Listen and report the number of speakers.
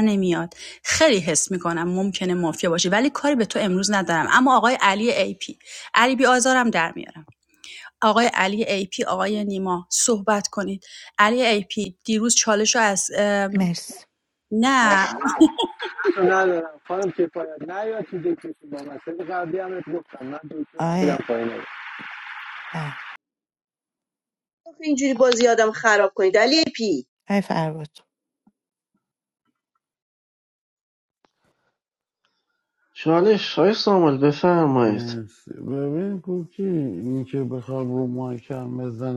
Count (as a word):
six